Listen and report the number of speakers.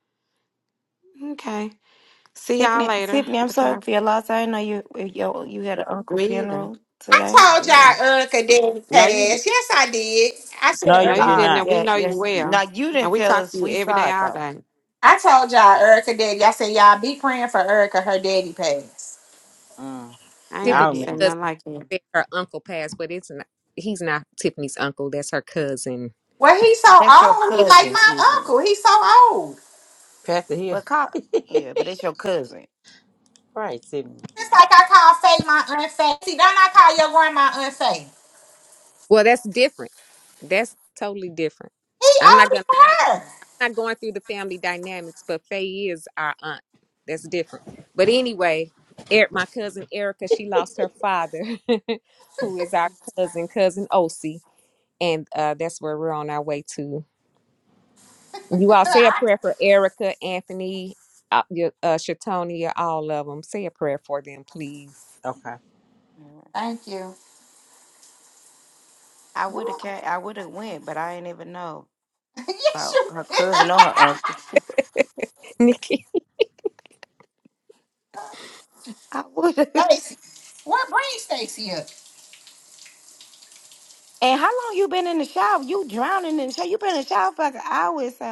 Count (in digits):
5